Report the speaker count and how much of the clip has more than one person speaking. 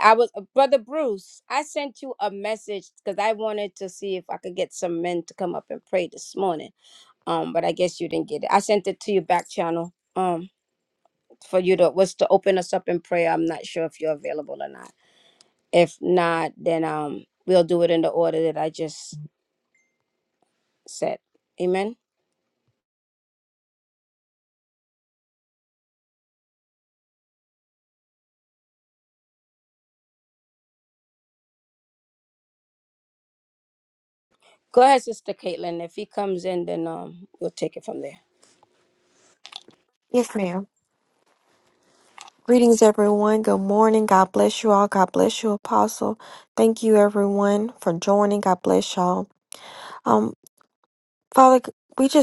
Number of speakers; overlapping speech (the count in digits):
2, no overlap